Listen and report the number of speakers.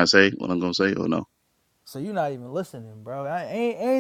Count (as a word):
two